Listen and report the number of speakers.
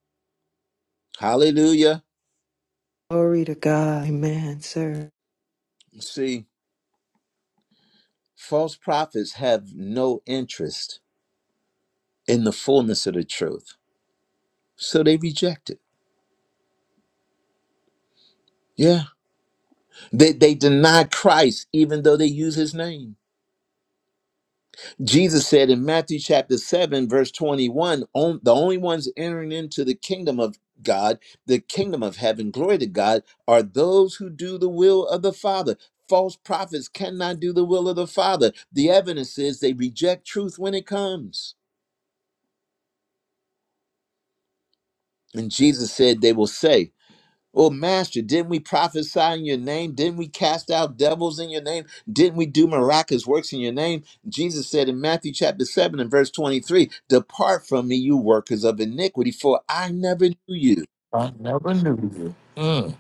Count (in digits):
3